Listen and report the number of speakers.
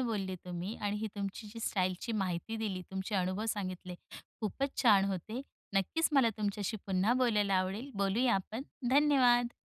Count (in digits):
1